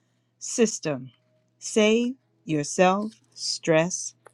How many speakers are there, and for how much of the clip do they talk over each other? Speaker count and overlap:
one, no overlap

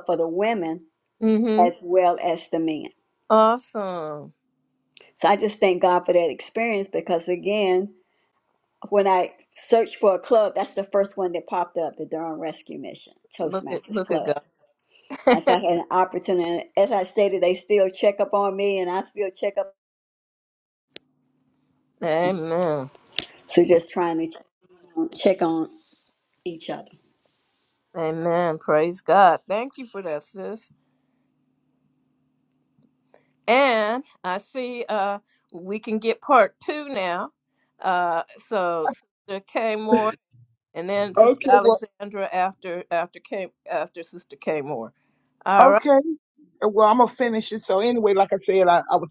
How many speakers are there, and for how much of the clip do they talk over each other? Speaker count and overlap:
three, about 4%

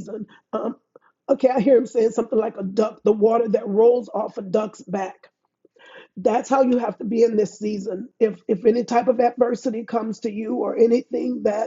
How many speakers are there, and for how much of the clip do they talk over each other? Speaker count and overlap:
one, no overlap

